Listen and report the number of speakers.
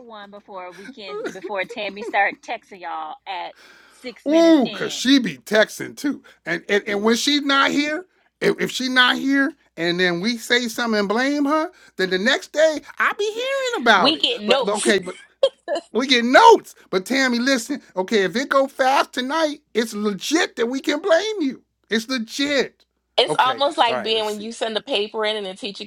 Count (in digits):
3